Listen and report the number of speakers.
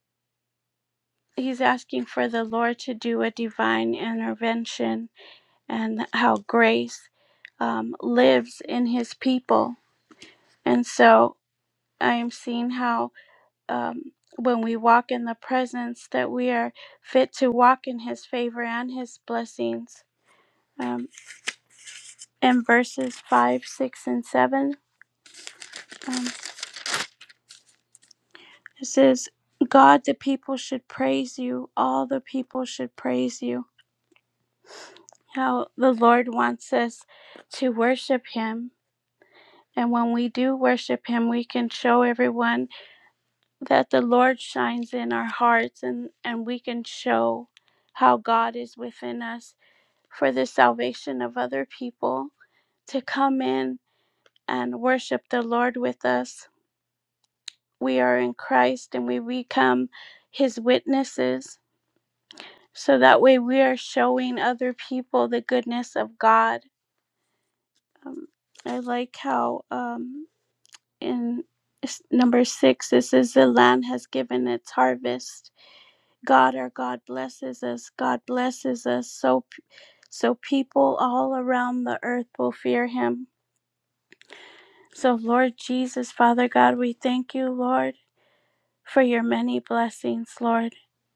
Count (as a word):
one